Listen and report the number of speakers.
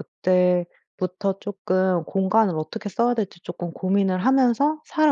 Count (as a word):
one